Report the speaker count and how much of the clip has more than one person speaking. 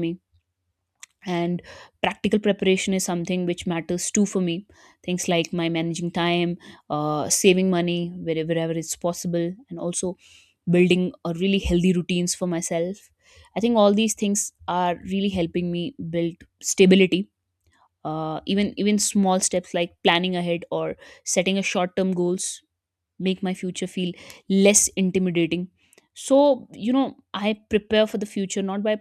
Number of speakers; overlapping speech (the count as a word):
one, no overlap